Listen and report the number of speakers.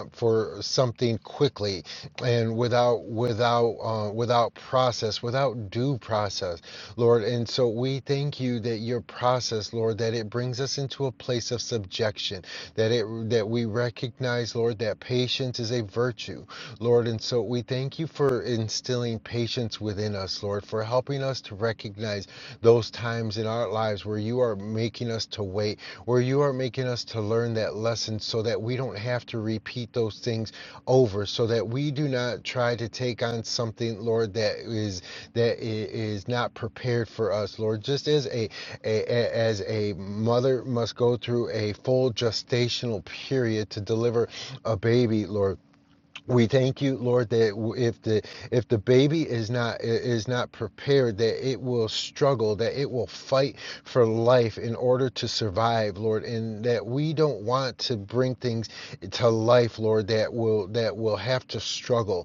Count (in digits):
1